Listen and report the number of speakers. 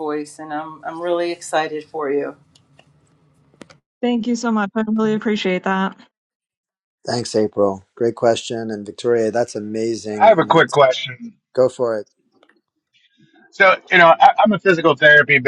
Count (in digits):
4